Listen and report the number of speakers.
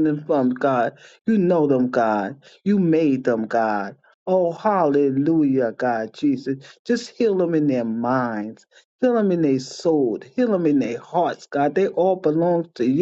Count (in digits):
1